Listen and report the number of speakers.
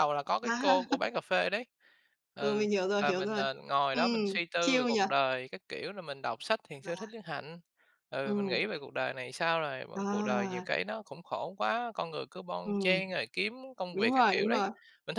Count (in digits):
2